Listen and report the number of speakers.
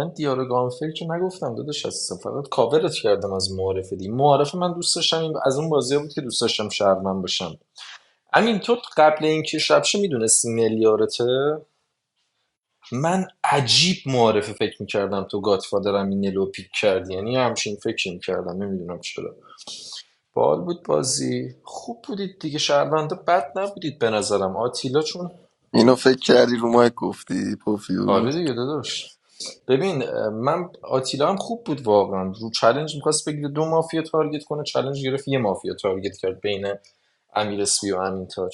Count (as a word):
two